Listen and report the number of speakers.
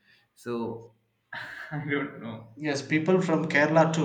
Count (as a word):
two